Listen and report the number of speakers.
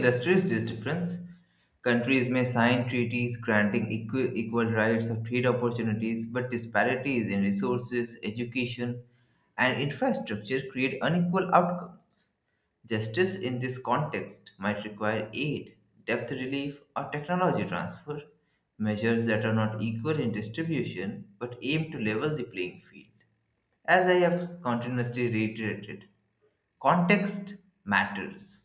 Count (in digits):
1